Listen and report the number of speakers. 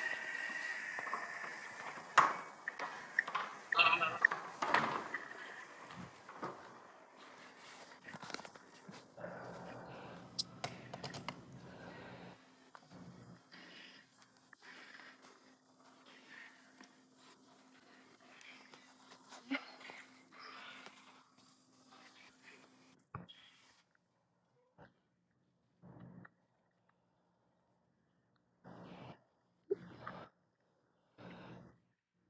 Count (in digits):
0